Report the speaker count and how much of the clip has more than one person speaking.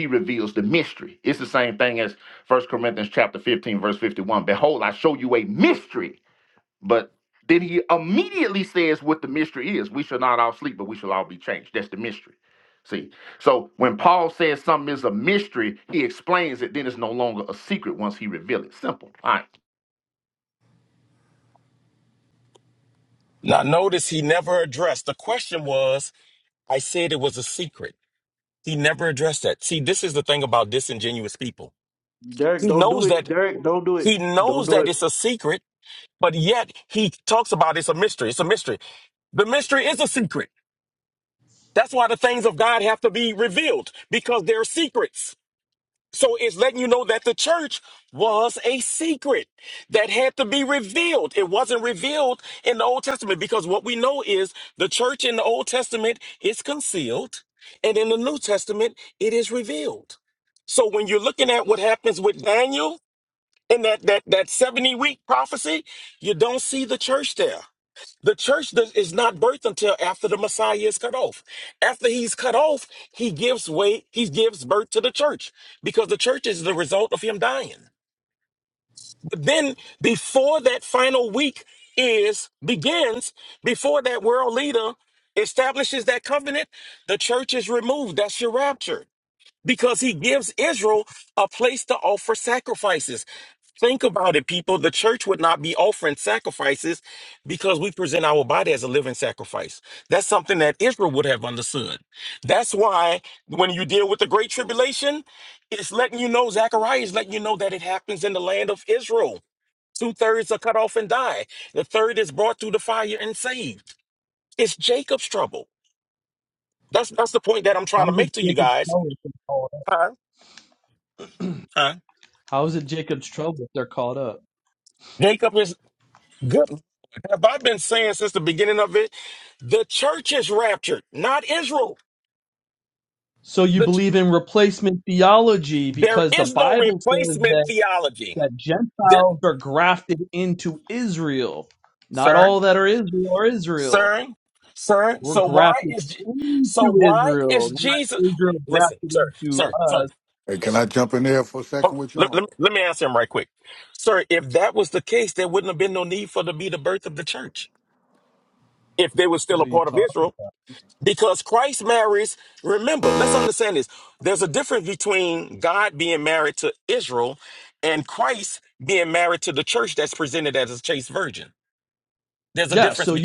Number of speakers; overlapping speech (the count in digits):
5, about 6%